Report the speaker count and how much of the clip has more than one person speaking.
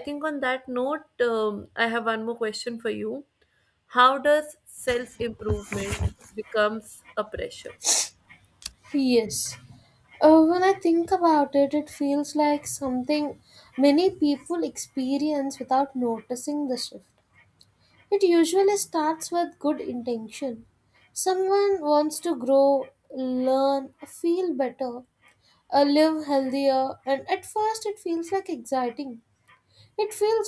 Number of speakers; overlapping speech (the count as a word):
two, no overlap